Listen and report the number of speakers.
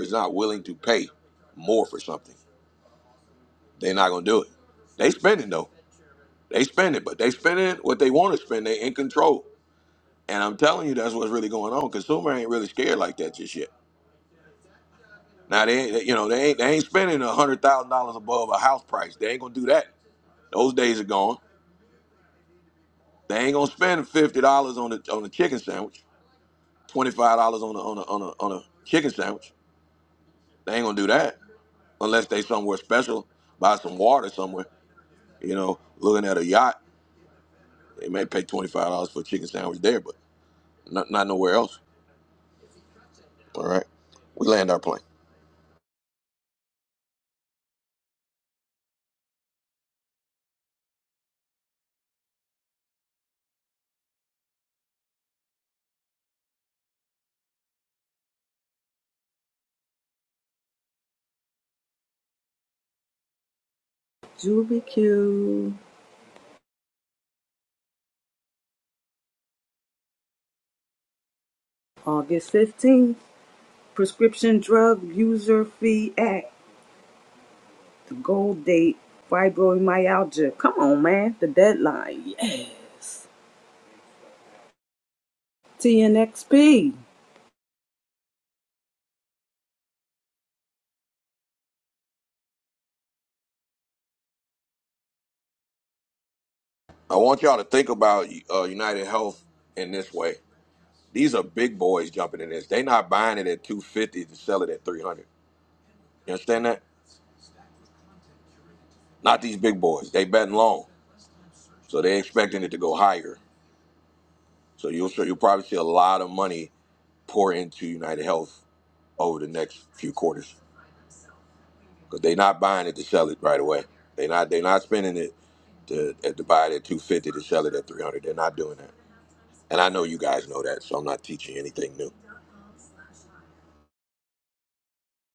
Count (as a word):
two